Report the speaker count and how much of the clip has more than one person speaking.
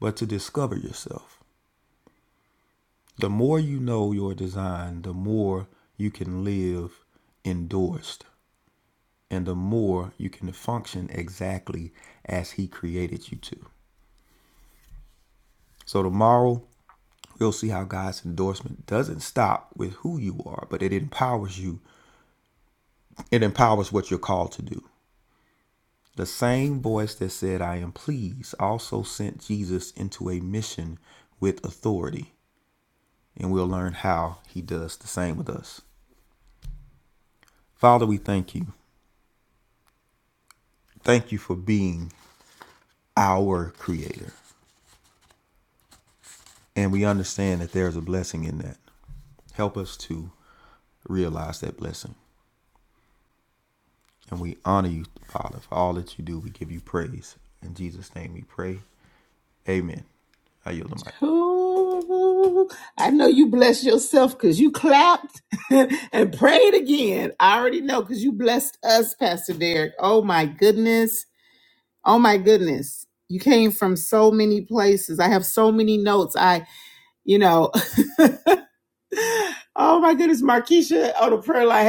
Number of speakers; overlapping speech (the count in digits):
2, no overlap